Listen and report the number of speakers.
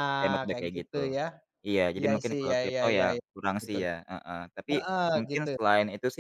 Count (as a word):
two